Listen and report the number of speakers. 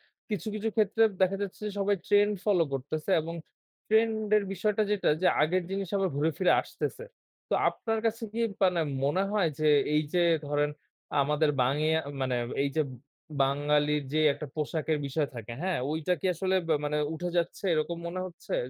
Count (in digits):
1